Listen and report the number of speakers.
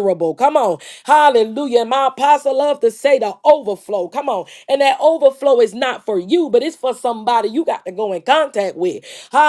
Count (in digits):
1